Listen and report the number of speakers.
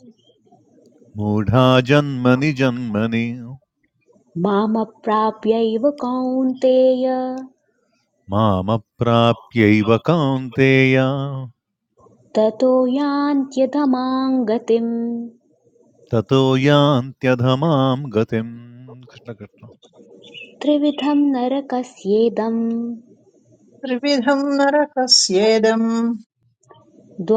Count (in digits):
3